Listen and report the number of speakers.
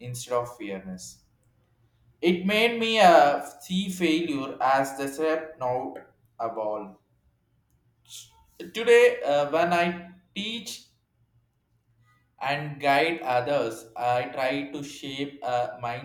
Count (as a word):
one